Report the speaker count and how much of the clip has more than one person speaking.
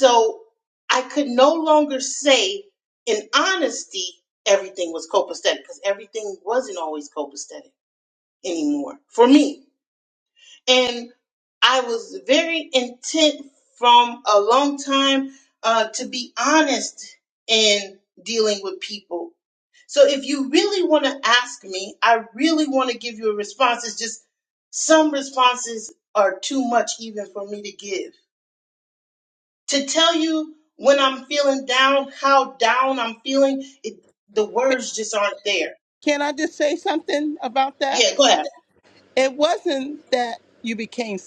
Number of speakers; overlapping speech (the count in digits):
2, under 1%